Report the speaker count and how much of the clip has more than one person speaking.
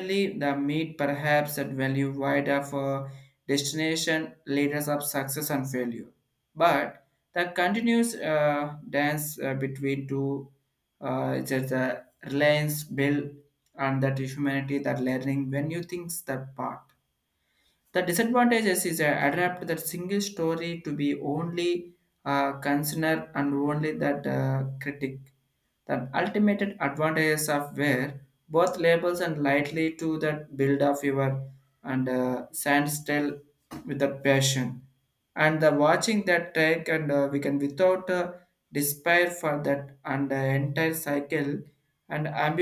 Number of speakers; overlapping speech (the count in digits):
1, no overlap